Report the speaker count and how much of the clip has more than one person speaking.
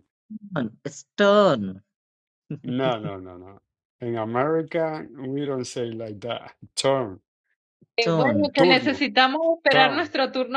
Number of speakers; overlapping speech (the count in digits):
3, about 12%